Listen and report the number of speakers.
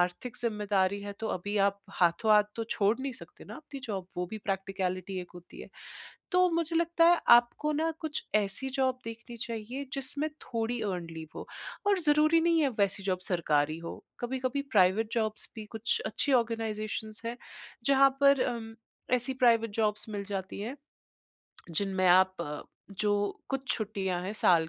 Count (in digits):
1